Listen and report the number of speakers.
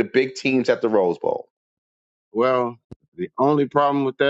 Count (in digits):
2